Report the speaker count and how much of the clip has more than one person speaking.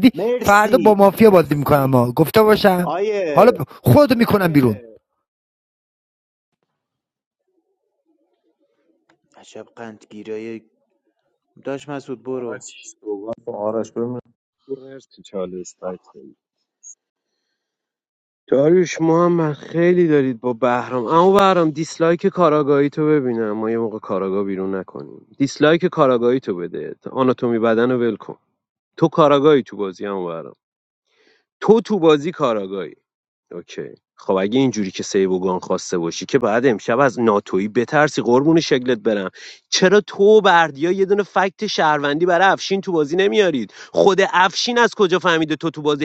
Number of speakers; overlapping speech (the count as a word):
four, about 2%